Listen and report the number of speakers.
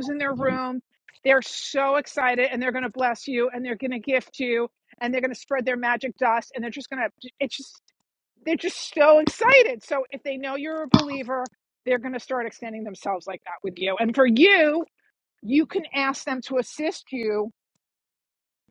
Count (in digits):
1